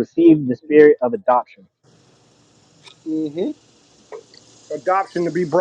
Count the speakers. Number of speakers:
two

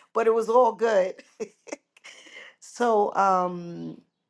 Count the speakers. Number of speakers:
one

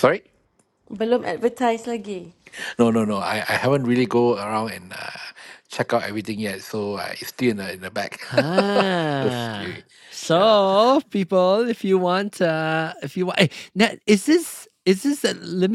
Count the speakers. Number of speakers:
three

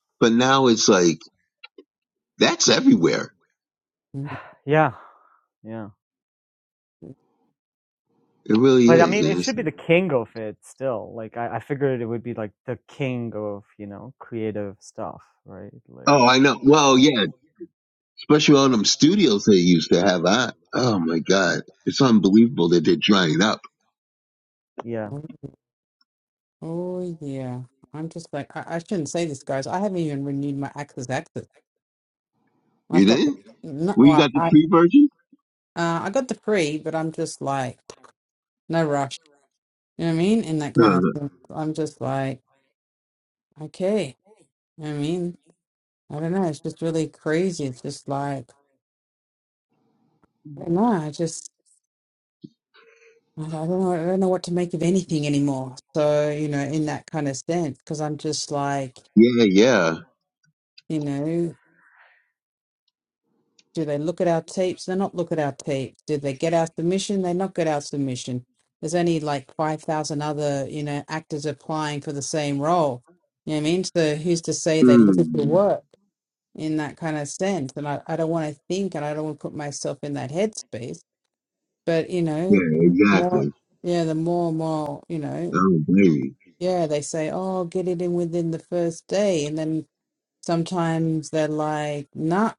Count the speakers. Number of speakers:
three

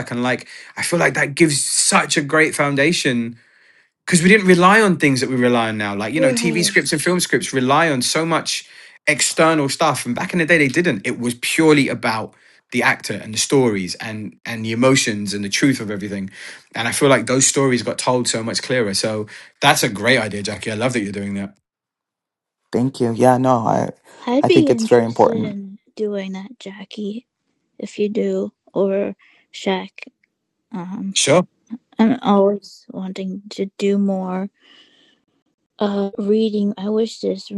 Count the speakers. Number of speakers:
three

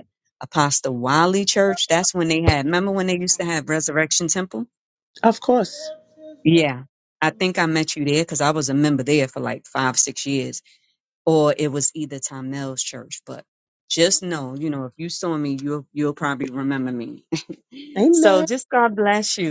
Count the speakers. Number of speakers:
two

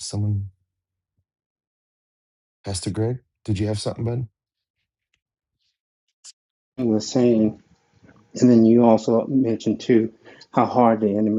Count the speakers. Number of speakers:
two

